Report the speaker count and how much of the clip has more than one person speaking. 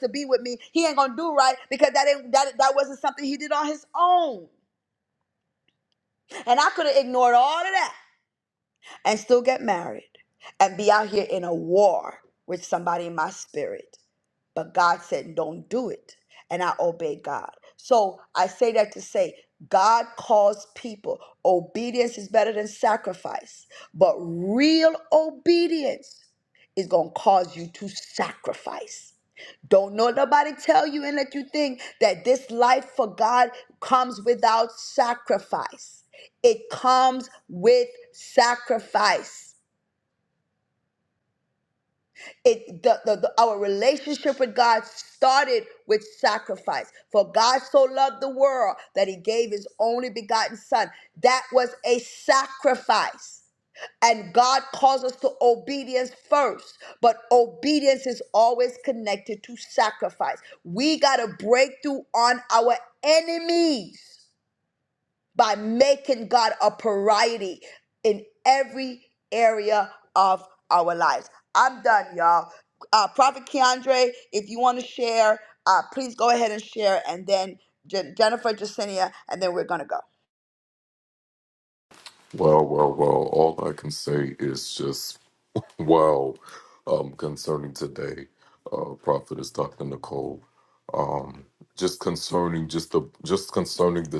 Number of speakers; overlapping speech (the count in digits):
2, no overlap